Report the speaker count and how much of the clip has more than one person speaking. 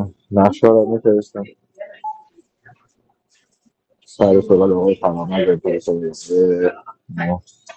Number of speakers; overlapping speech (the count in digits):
1, no overlap